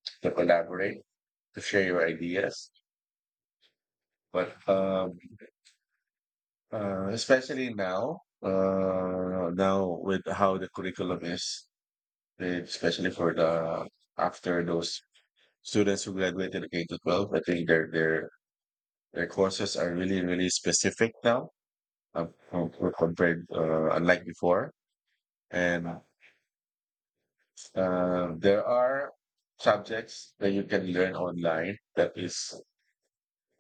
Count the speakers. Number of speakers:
one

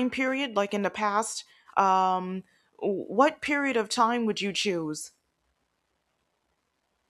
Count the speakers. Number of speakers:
one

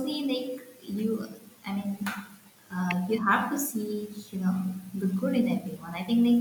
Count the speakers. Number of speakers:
one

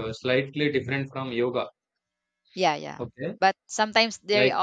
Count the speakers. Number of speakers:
two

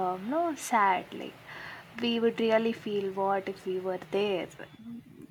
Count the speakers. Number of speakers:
one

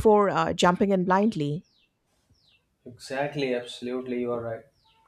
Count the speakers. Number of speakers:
two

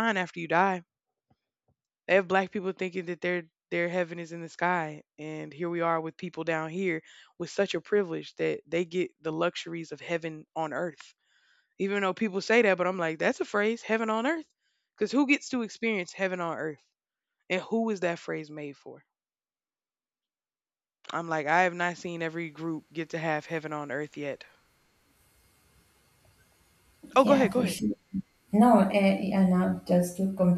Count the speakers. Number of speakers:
two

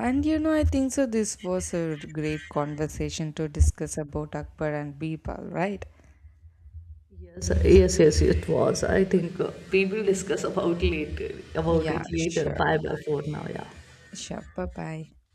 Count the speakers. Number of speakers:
two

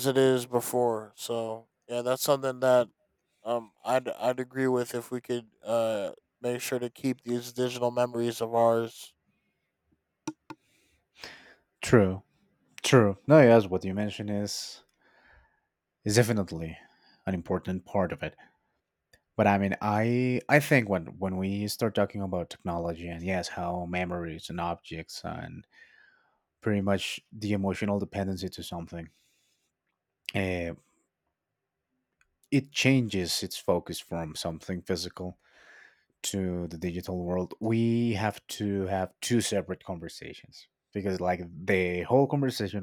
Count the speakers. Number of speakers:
two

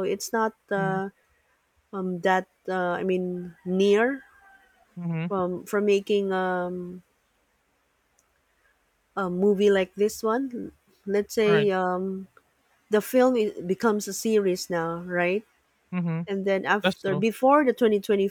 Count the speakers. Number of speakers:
two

